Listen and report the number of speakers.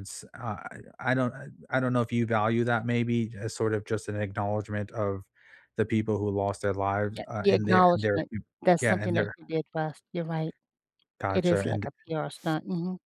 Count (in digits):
2